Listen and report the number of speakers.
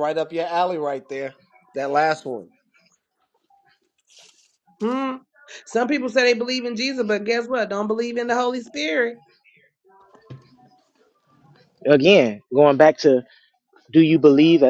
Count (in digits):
3